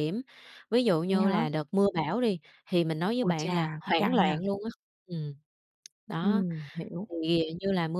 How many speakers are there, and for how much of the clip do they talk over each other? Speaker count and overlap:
2, about 23%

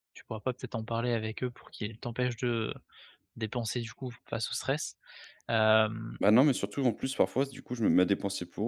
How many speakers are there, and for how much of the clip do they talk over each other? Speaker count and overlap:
2, no overlap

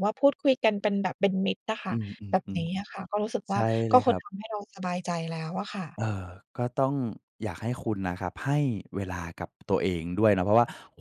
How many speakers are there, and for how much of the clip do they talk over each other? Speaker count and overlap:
2, about 8%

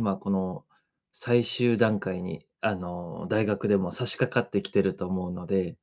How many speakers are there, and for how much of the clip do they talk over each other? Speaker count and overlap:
1, no overlap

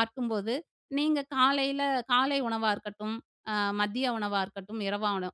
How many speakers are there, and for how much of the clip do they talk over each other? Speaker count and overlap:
1, no overlap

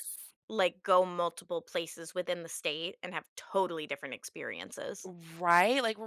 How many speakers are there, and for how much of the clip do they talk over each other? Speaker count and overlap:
2, no overlap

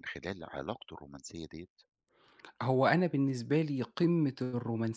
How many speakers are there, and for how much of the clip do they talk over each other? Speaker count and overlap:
2, no overlap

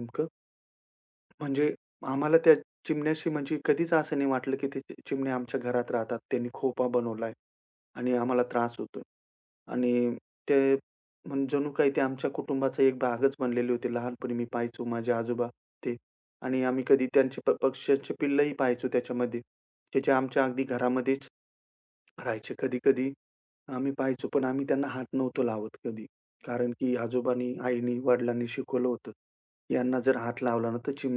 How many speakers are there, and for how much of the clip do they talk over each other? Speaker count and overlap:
1, no overlap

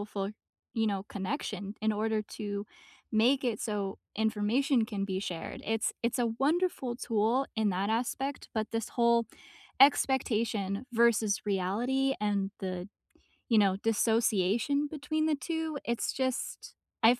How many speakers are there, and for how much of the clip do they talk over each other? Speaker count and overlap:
1, no overlap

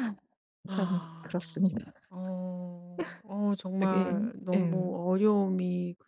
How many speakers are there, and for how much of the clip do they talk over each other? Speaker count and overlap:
2, about 25%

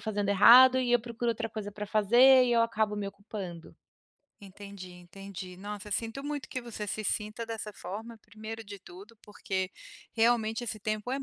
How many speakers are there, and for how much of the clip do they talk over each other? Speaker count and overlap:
2, no overlap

